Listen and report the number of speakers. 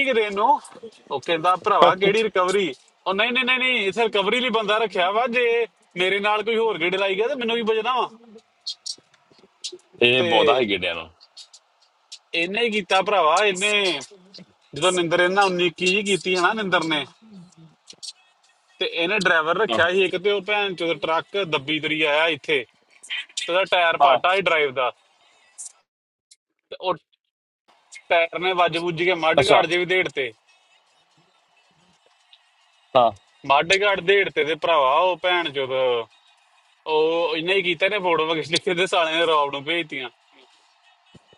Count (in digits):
2